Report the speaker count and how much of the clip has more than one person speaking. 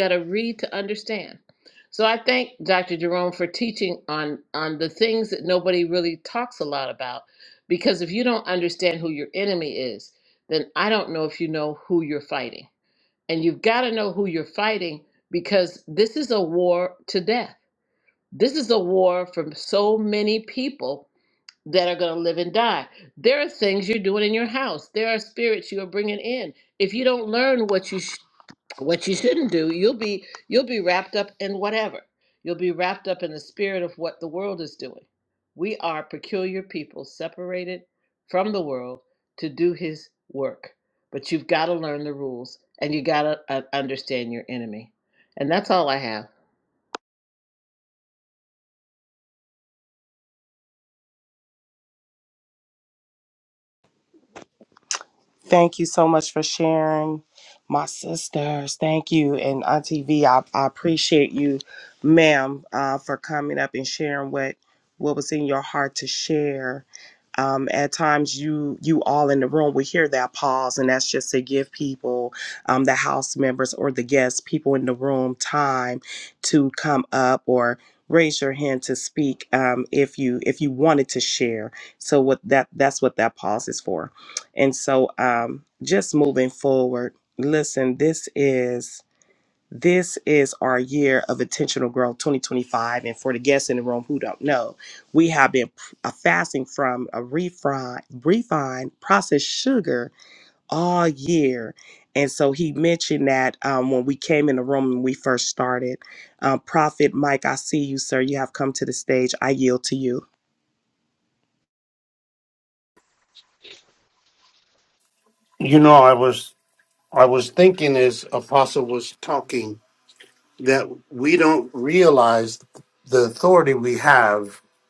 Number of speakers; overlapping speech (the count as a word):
three, no overlap